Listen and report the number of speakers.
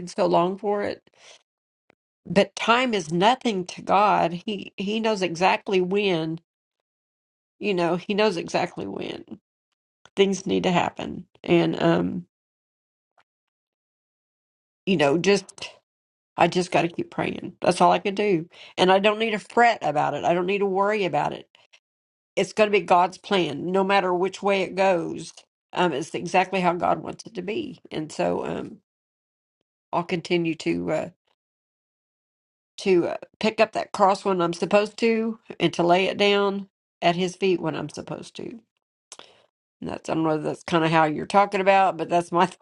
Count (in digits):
1